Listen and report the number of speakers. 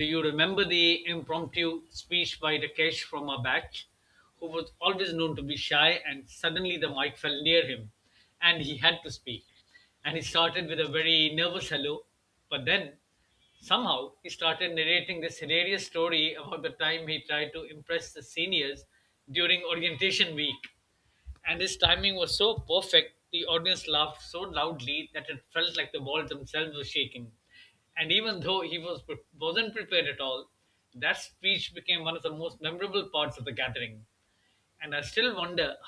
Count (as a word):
one